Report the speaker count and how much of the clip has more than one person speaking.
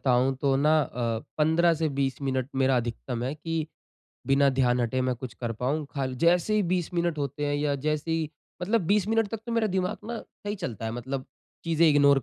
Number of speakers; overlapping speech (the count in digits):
1, no overlap